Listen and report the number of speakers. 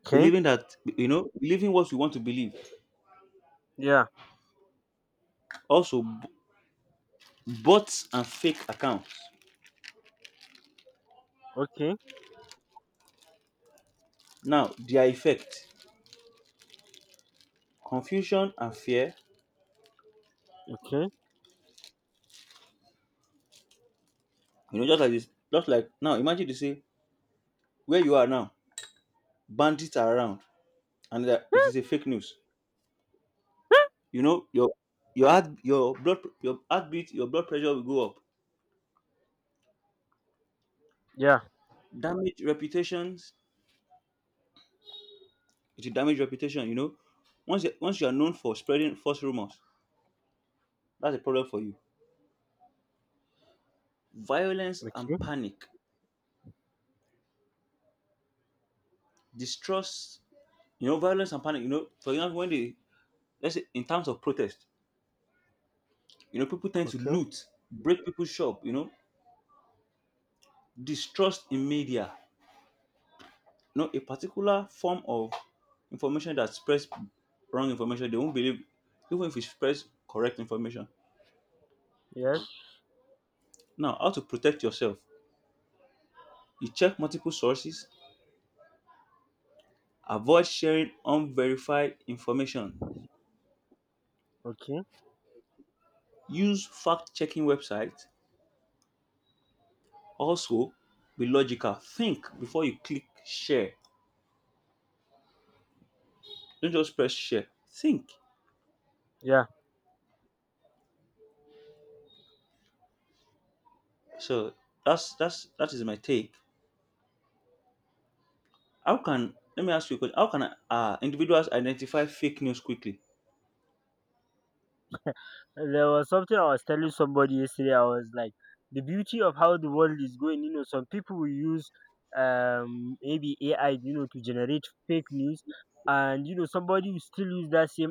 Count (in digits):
2